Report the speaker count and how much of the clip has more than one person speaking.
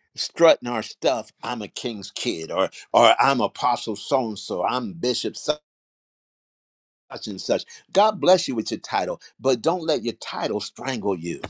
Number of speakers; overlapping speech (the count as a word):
one, no overlap